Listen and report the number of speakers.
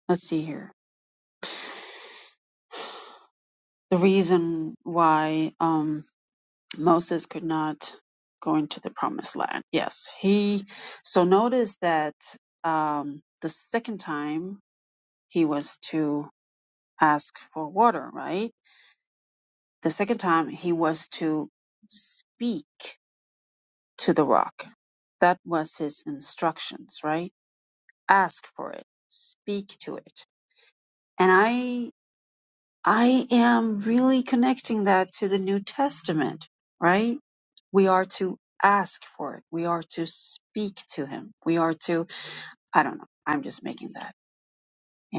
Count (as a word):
one